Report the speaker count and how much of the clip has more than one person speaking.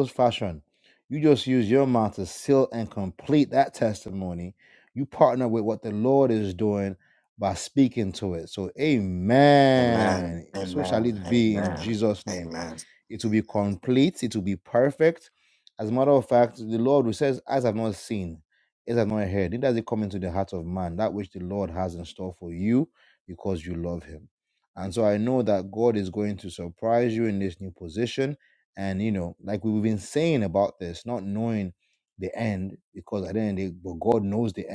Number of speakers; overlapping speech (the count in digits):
2, about 5%